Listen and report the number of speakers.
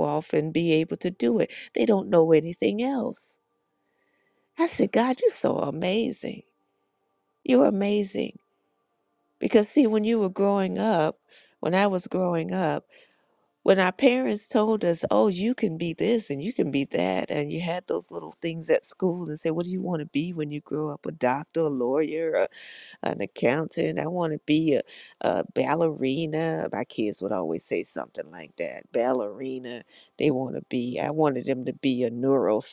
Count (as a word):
one